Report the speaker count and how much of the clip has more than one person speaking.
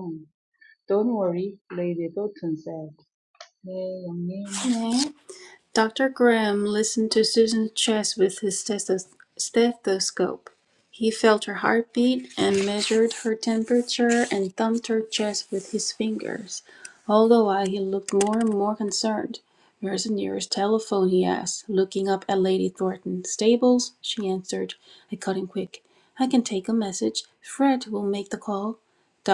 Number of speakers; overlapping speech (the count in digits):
2, under 1%